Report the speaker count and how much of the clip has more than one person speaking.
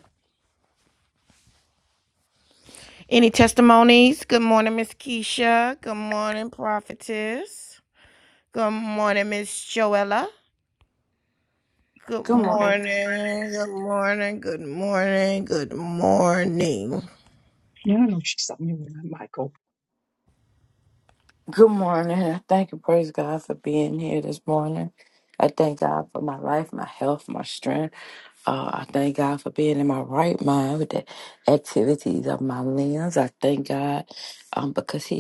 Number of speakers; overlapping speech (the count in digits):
3, about 2%